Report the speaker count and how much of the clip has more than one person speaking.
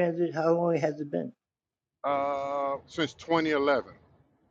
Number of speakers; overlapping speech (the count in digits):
2, no overlap